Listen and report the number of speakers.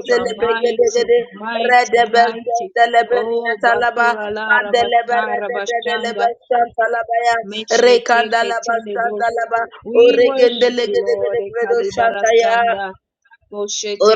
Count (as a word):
two